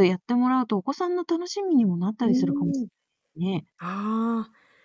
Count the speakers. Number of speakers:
two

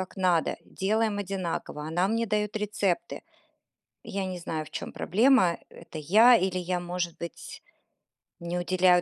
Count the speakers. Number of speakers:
one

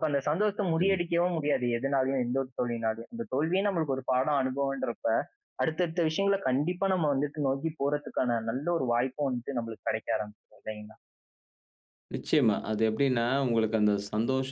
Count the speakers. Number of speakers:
two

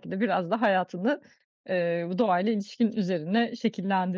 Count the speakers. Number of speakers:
one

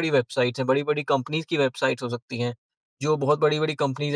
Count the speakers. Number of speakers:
one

